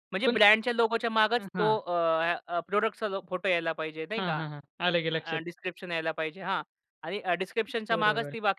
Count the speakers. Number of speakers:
2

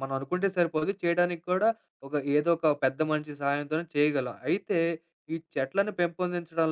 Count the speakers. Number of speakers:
1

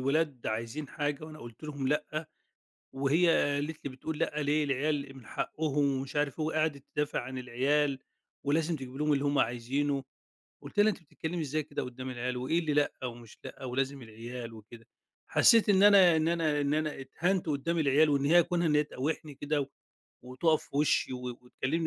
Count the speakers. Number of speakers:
1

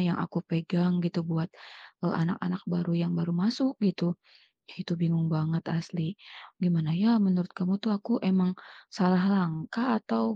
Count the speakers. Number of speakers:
1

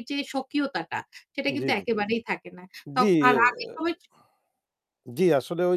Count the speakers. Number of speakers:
2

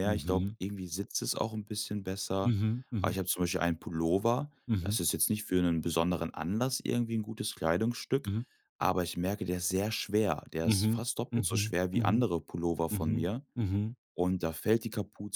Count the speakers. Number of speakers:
2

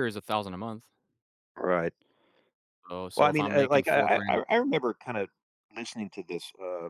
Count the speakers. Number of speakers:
2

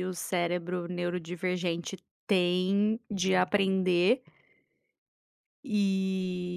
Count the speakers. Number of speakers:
1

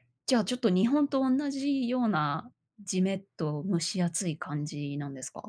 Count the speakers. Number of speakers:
1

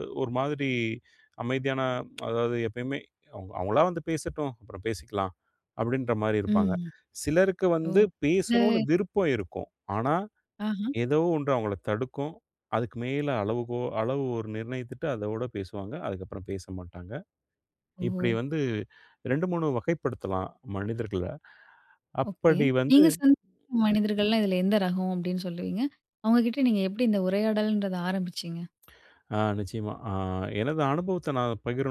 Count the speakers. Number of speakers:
2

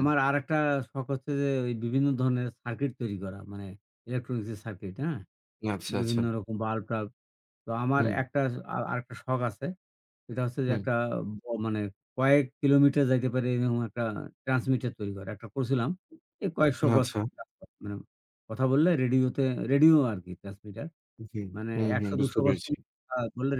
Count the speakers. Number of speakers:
2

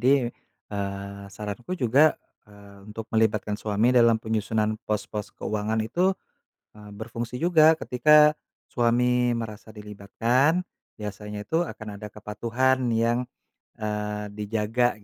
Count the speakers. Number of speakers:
1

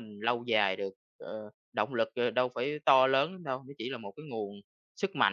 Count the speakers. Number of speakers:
1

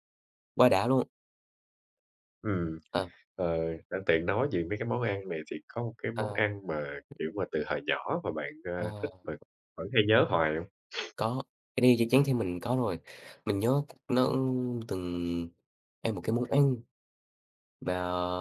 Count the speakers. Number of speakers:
2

